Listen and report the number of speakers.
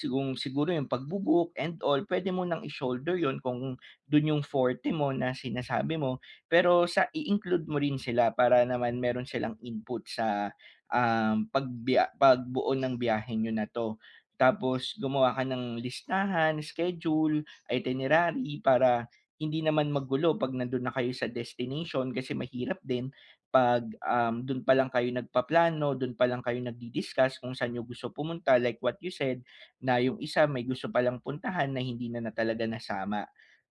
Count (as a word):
one